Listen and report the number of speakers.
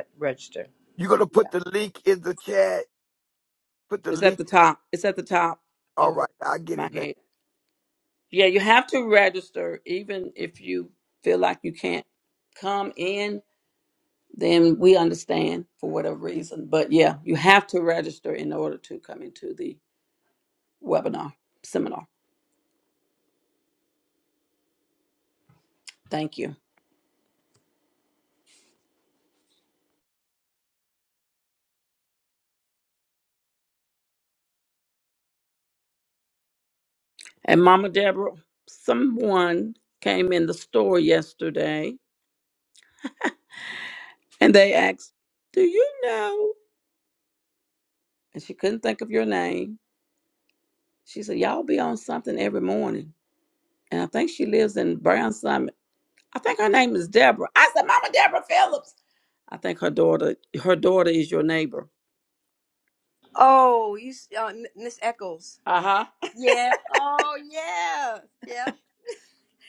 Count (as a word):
three